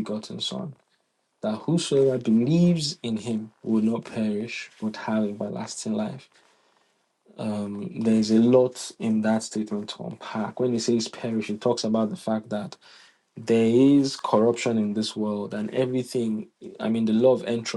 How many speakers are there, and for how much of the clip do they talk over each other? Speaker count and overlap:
1, no overlap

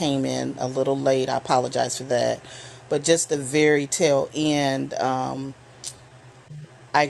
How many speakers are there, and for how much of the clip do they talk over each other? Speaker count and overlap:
1, no overlap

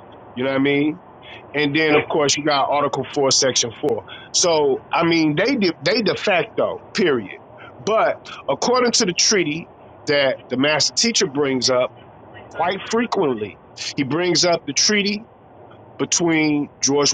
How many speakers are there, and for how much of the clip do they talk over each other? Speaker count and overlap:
1, no overlap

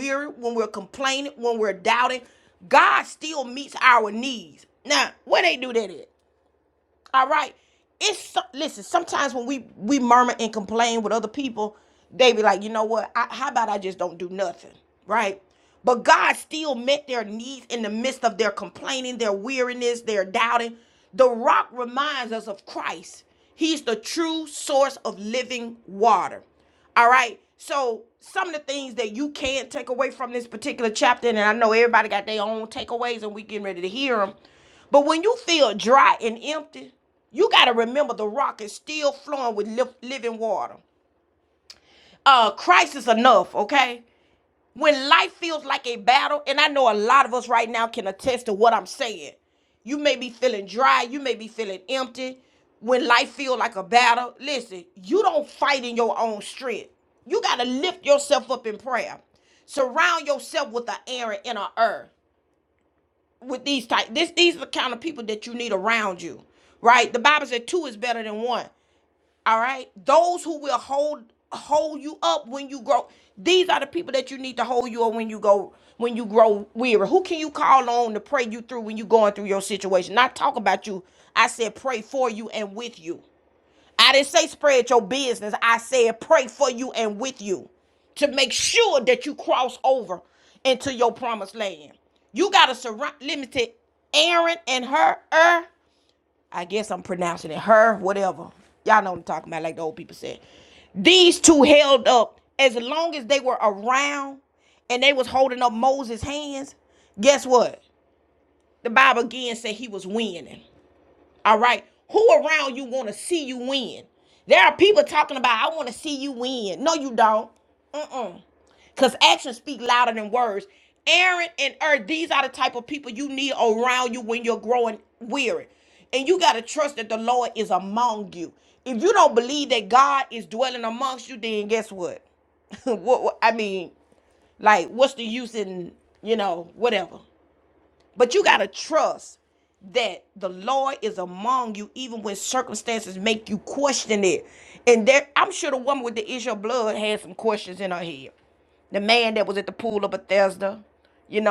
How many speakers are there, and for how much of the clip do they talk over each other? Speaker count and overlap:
1, no overlap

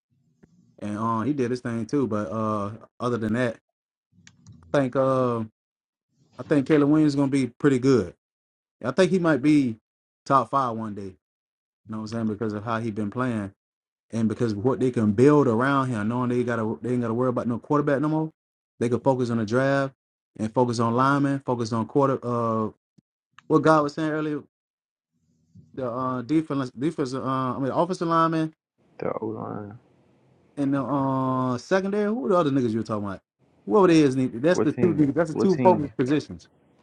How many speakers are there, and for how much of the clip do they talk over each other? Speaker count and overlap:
2, about 4%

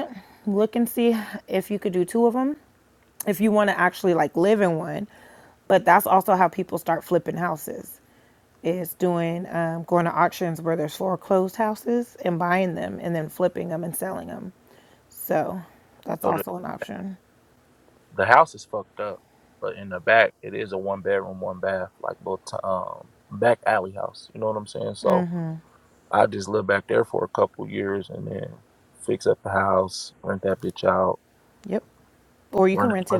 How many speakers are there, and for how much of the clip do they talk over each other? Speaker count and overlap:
2, about 2%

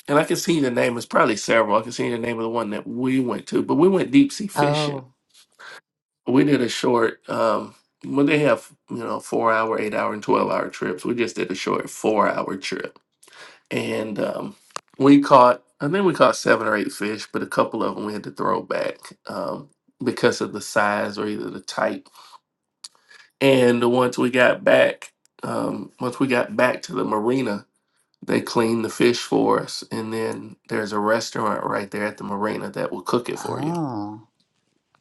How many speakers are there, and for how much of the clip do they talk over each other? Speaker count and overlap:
2, about 2%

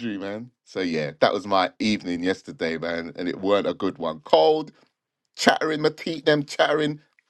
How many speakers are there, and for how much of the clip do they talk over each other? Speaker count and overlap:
1, no overlap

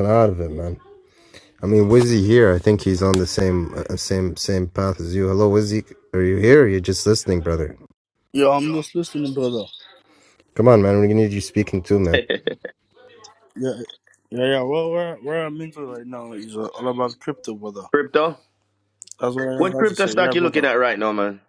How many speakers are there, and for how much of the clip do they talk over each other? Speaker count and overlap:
3, about 5%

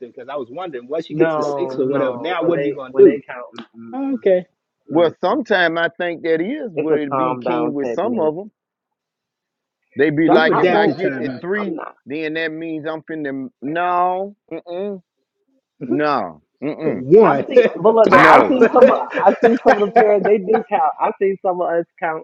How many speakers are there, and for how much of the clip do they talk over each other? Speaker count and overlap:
3, about 29%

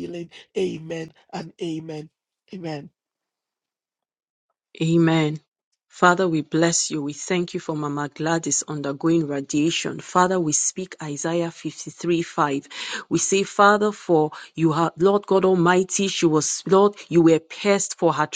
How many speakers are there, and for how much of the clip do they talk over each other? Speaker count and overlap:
2, no overlap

